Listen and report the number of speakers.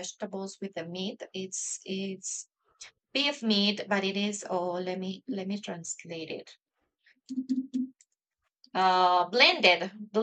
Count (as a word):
one